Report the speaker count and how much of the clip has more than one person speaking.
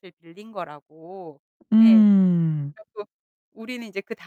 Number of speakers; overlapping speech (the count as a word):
two, about 6%